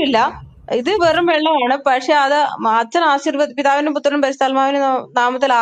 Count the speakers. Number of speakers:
1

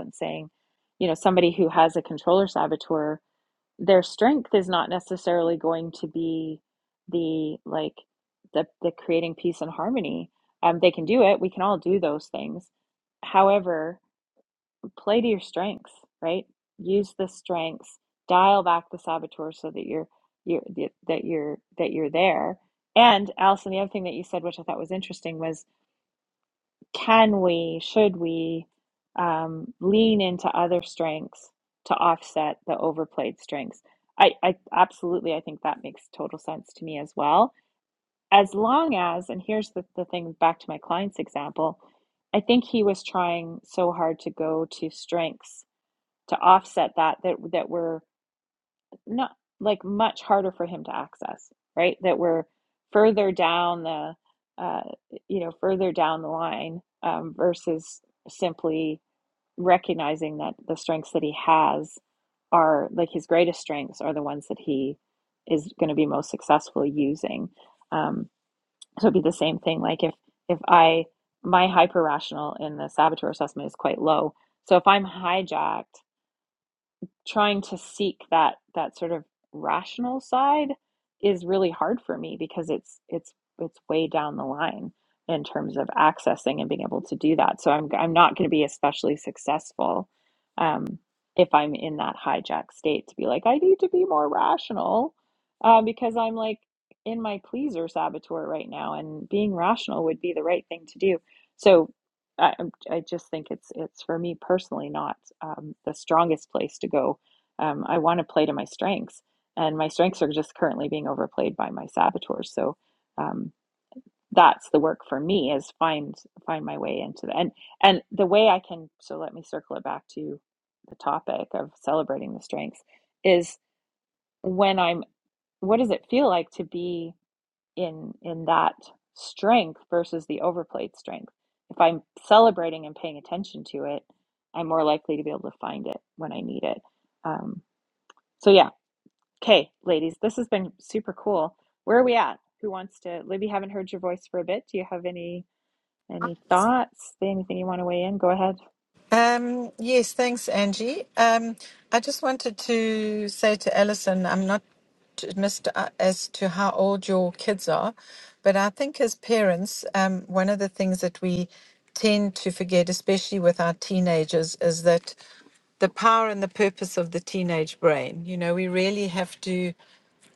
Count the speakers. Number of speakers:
2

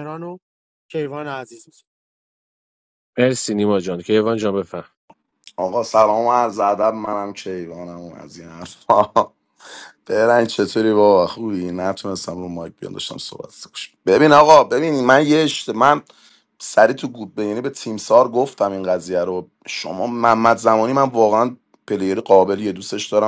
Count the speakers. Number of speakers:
3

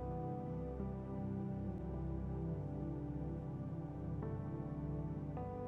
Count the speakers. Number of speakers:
0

